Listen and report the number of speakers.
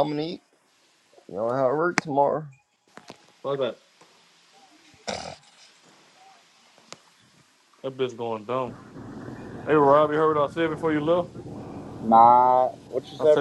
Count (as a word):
three